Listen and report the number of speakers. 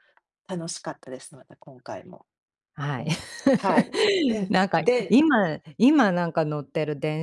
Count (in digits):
2